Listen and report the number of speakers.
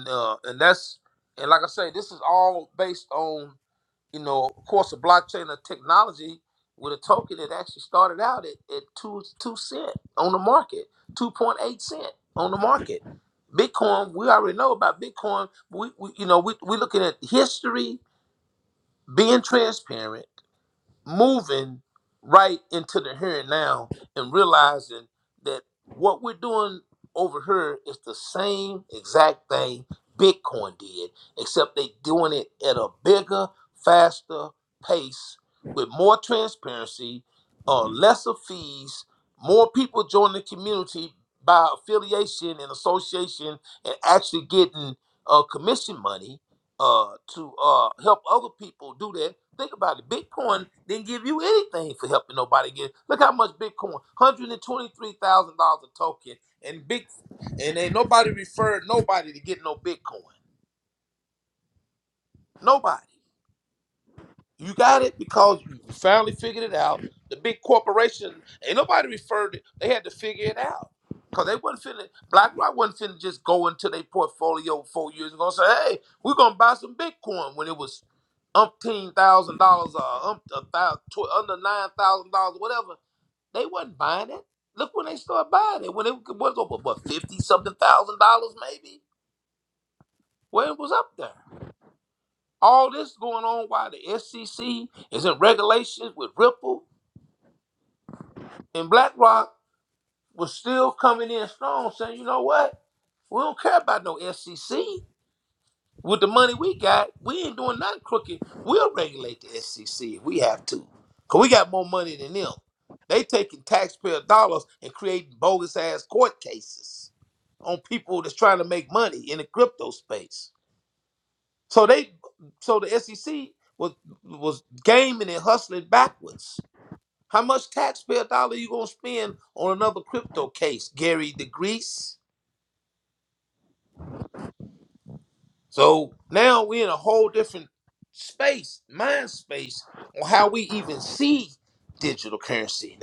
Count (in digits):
1